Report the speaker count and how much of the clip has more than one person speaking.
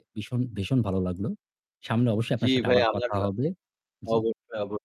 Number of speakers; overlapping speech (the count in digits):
2, about 20%